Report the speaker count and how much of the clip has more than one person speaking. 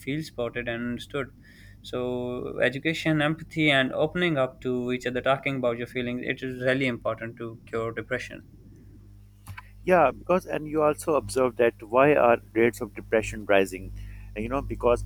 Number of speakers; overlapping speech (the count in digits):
2, no overlap